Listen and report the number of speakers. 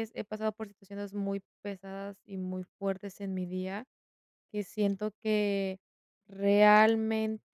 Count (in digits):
1